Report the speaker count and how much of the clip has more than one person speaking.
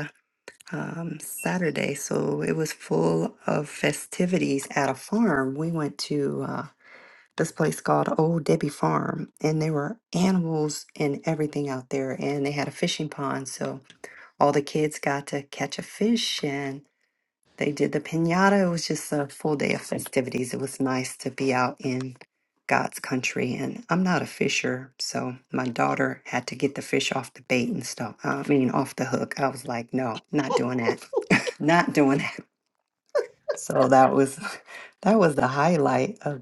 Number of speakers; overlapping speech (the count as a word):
one, no overlap